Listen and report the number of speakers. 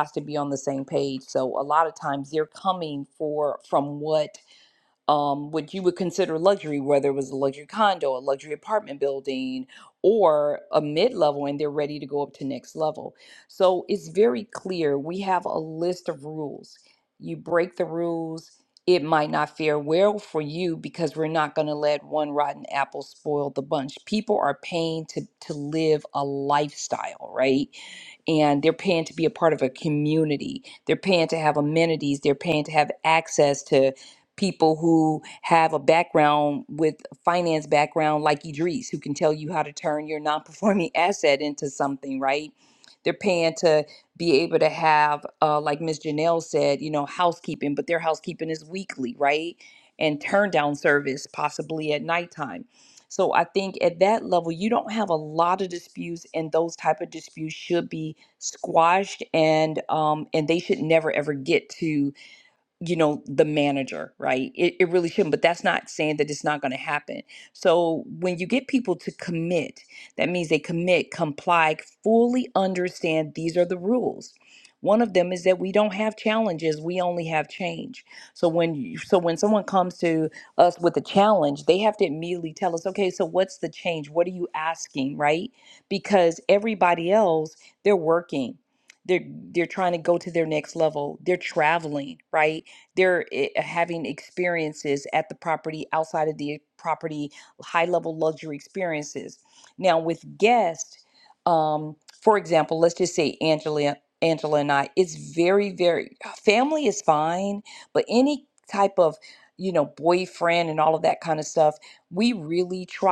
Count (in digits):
1